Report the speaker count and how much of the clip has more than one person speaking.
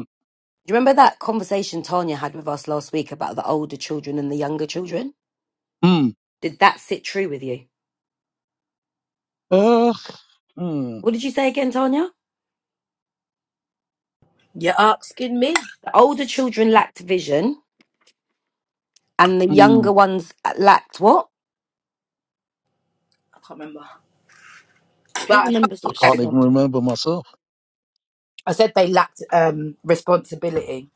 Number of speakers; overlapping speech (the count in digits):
3, about 4%